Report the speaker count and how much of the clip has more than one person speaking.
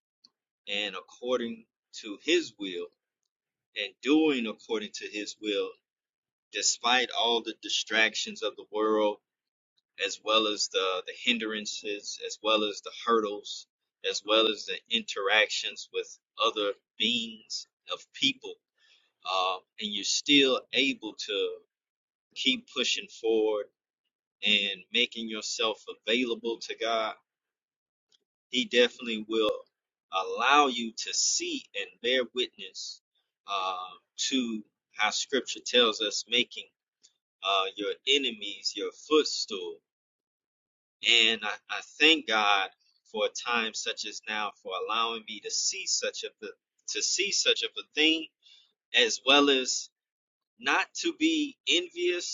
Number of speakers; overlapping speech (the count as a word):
one, no overlap